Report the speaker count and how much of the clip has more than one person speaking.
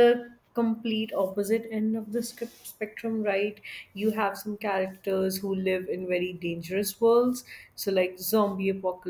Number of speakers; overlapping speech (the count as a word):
one, no overlap